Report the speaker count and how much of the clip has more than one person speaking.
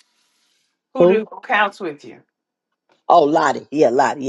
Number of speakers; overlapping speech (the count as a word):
two, about 5%